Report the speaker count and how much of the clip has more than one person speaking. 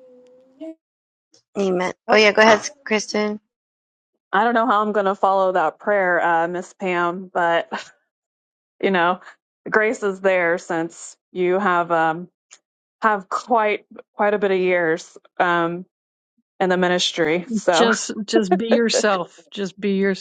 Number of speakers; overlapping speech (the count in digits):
3, about 2%